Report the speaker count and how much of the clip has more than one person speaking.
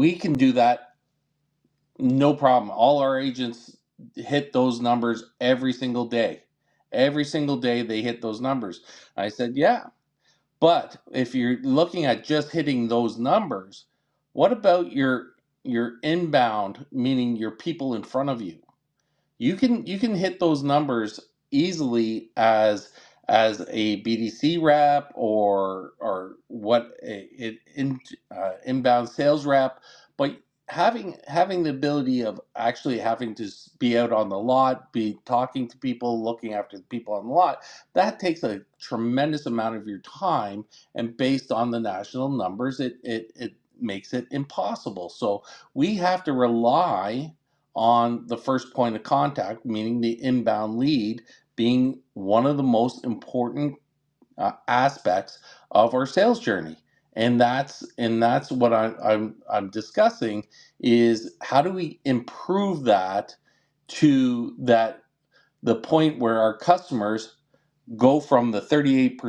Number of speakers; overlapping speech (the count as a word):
one, no overlap